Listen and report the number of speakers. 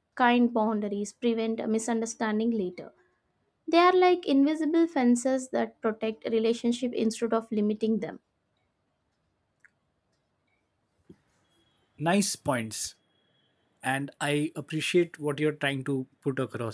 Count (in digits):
2